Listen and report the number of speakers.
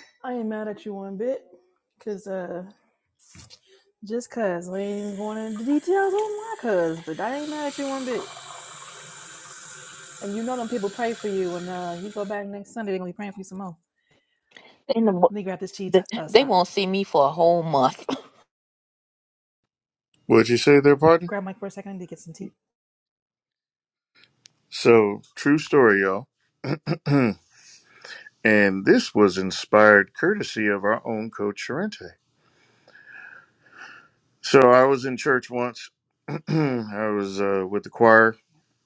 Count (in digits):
3